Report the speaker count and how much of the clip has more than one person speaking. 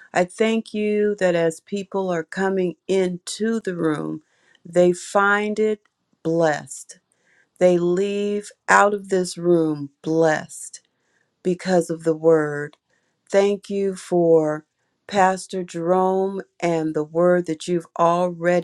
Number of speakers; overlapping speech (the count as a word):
one, no overlap